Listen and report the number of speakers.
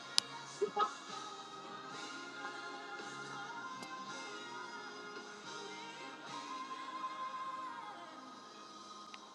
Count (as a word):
zero